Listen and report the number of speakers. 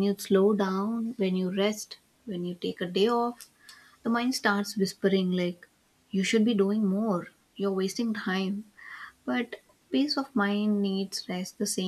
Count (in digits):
1